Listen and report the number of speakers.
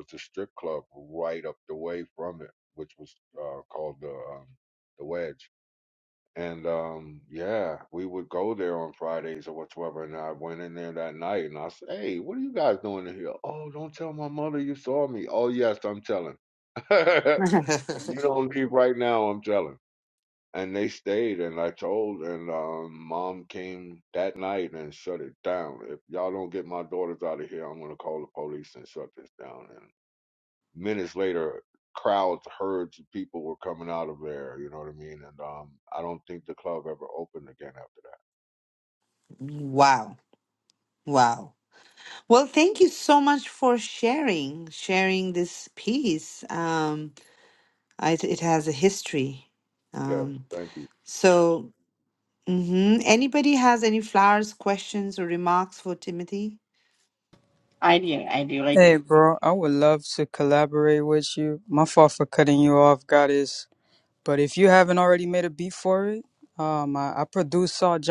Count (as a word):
four